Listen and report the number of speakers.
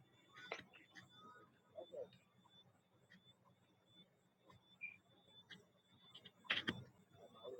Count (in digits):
0